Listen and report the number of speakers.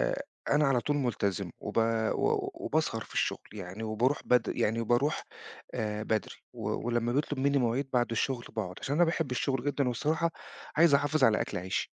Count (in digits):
1